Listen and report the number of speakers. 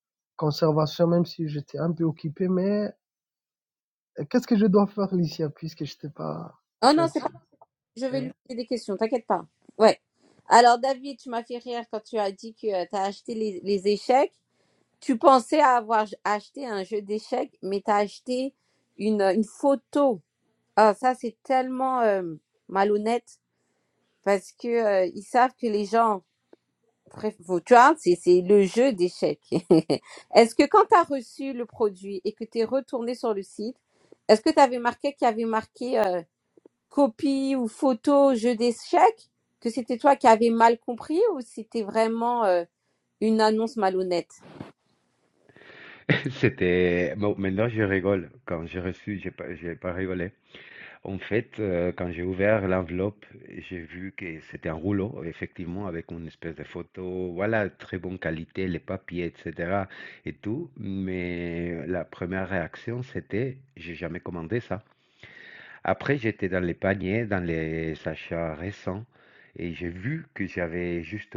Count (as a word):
three